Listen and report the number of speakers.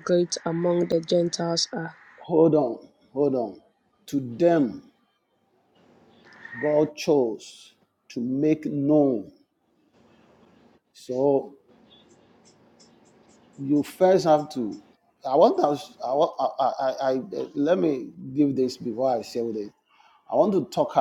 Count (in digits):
2